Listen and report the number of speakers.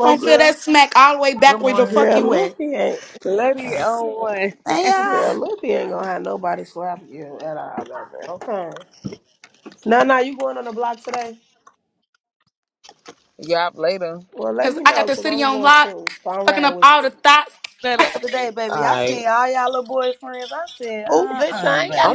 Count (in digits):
4